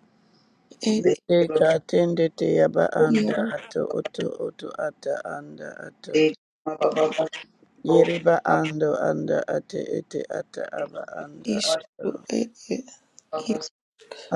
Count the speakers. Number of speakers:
3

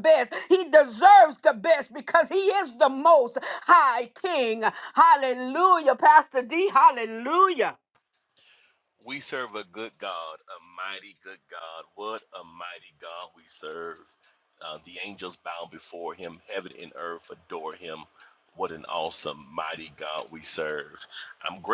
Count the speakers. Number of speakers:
2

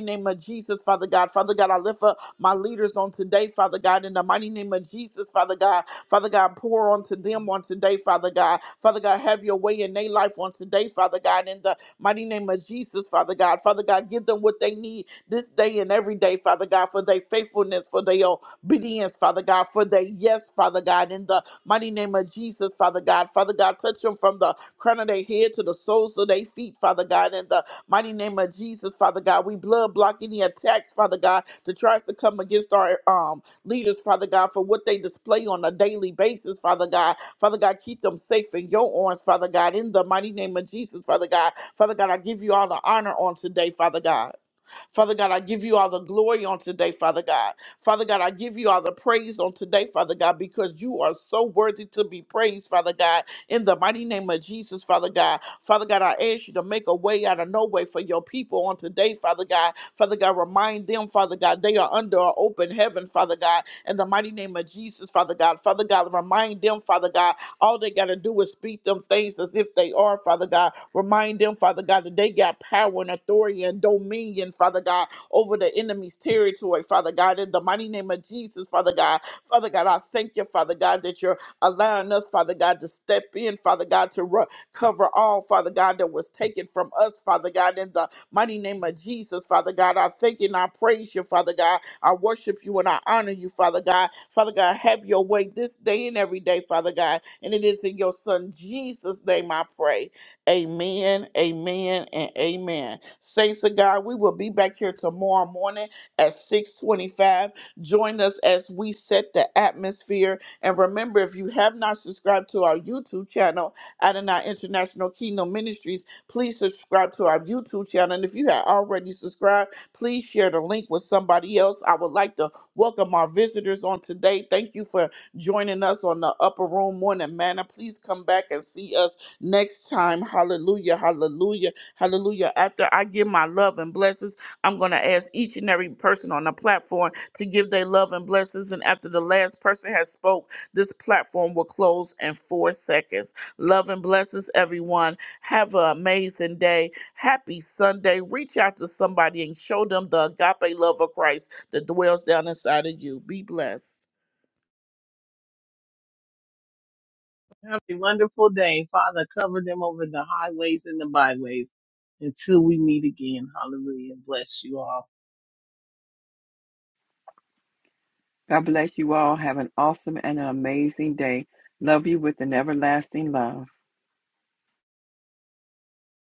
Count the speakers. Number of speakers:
3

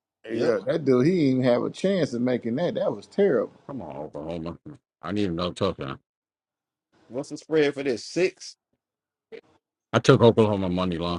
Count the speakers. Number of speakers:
3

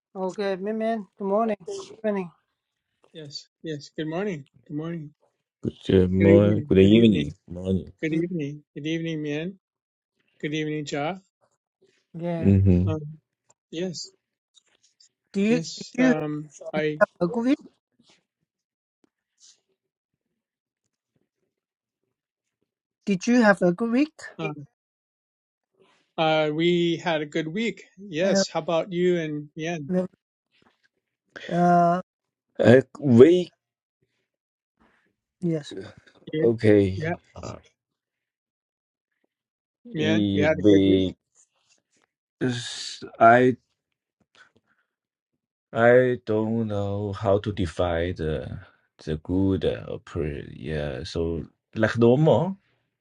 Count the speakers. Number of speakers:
3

